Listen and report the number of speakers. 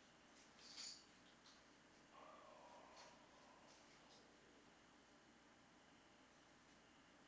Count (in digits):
1